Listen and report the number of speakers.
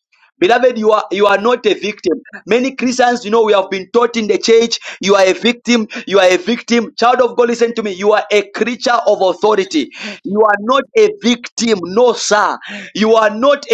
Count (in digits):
1